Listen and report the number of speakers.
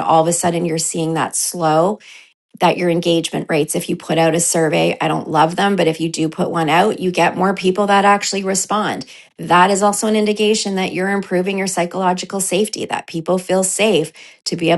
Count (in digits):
1